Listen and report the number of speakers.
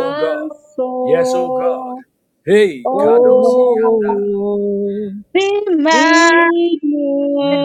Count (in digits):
3